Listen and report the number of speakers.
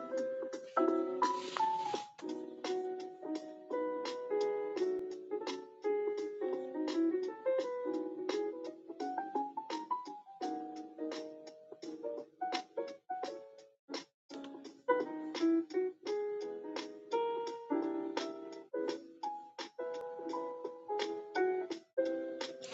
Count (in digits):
0